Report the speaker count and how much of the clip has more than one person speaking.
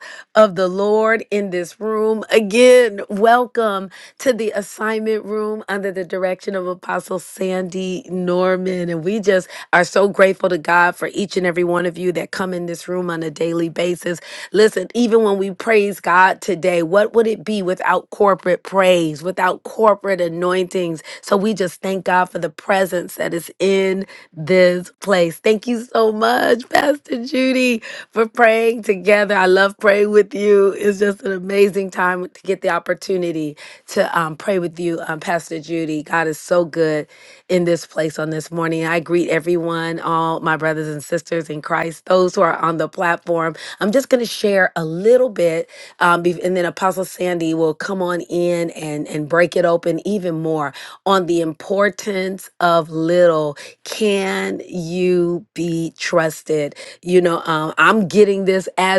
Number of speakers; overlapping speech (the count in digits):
1, no overlap